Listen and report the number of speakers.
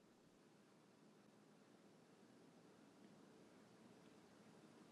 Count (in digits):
0